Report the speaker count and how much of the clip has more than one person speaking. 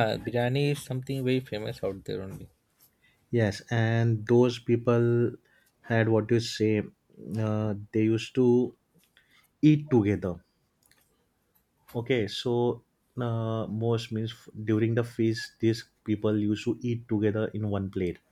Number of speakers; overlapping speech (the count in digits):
2, no overlap